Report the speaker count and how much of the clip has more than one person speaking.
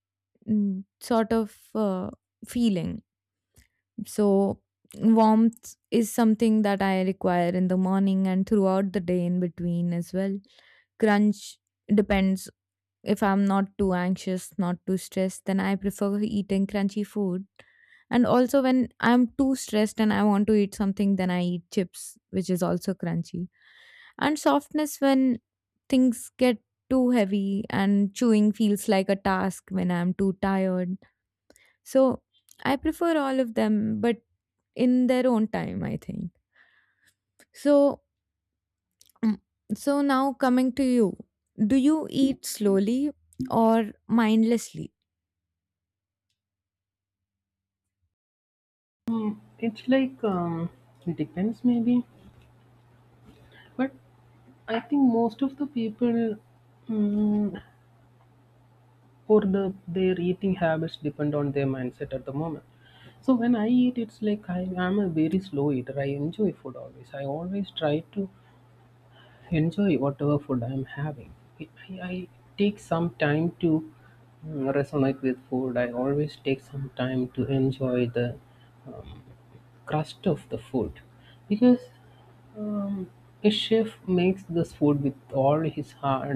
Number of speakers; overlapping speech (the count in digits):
2, no overlap